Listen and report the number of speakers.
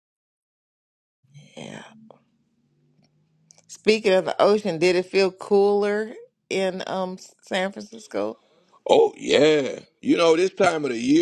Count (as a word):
two